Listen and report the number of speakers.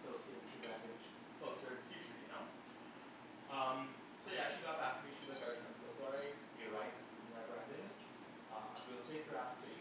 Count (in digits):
1